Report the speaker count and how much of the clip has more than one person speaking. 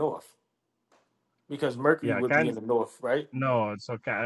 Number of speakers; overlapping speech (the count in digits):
2, about 12%